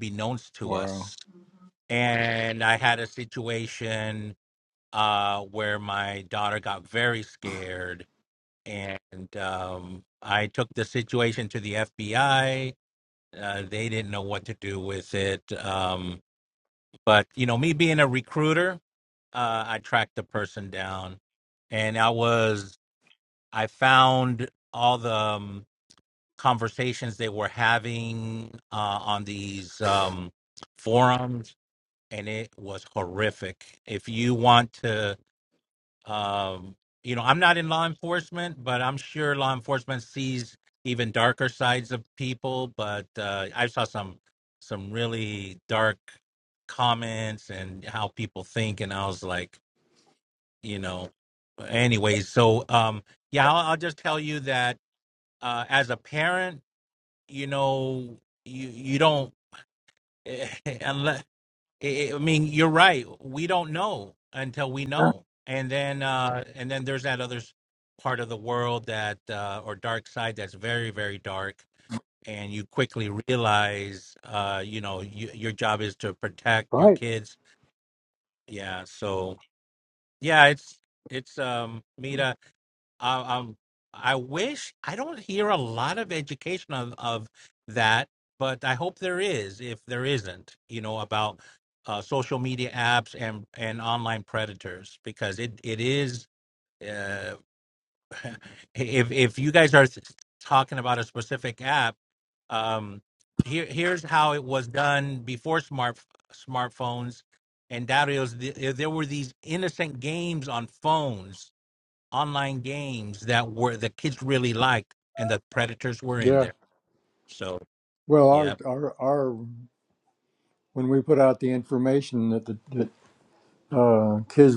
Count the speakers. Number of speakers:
2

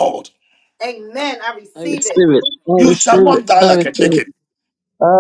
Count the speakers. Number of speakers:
3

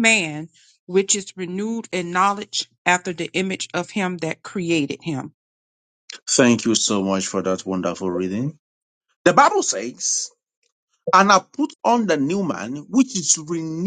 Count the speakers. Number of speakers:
2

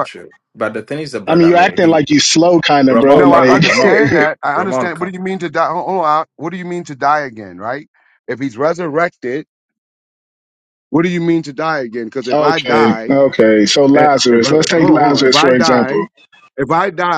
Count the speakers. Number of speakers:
3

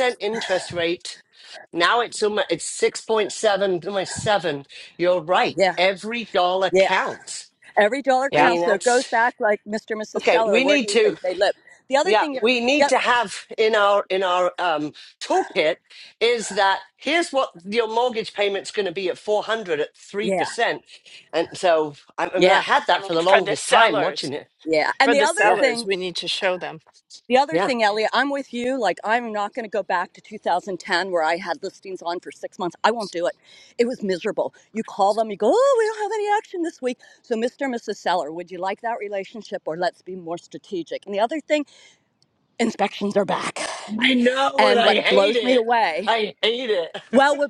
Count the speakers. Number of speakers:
3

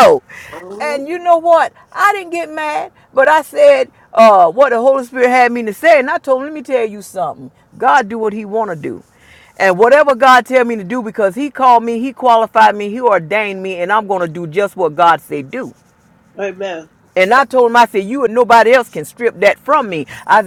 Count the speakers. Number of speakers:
2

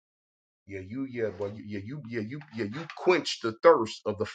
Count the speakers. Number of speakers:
1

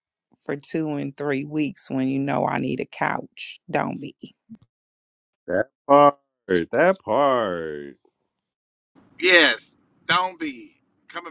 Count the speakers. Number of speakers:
3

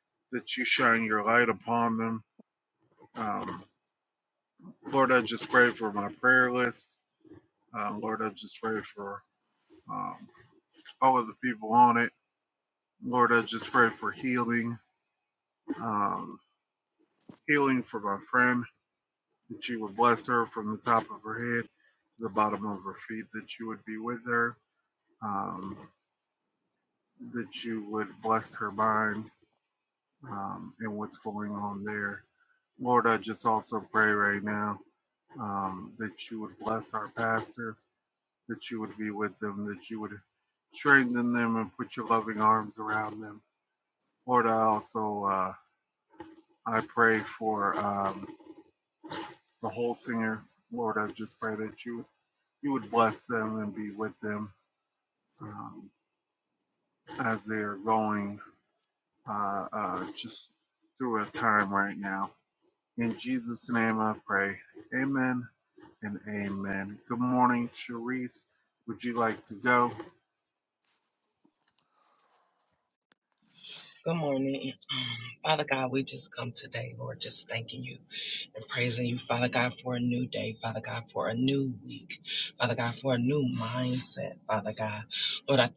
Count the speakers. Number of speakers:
2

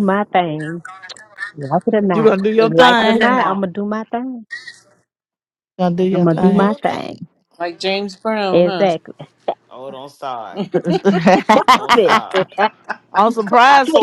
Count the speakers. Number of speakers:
4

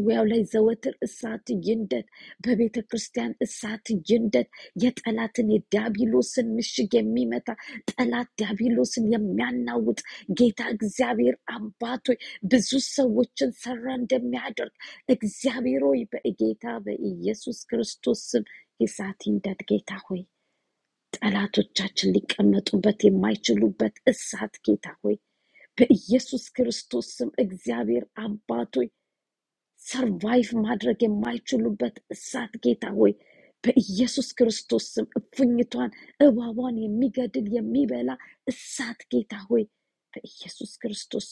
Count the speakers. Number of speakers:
1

